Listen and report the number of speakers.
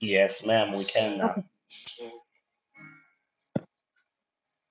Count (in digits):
1